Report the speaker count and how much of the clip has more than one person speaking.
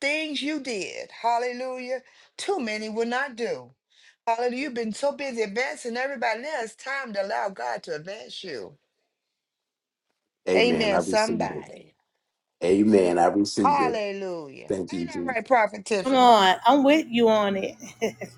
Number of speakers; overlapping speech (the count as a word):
three, about 12%